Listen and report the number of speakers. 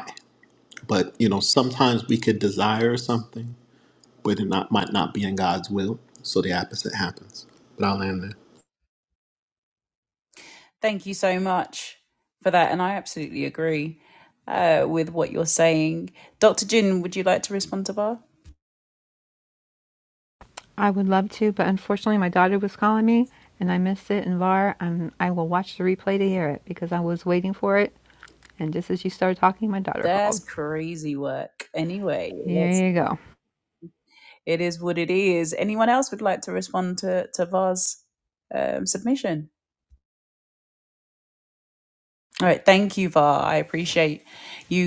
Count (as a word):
three